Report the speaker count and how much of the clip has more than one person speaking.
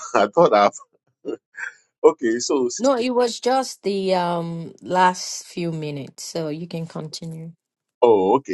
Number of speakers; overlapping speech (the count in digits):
2, about 3%